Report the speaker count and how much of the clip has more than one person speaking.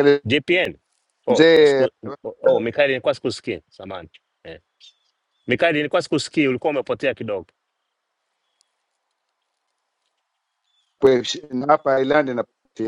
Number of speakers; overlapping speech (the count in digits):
2, about 6%